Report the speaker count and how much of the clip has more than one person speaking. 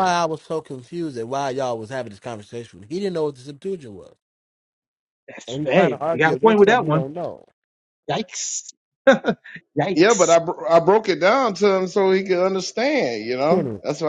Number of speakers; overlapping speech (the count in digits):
3, about 15%